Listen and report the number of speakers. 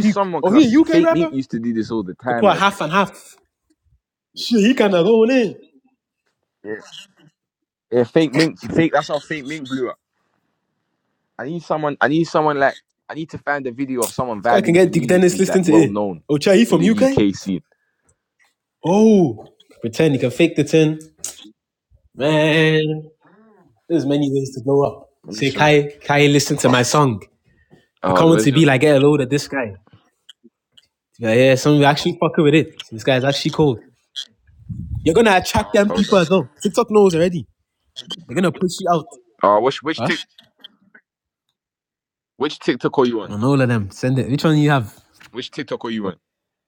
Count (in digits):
2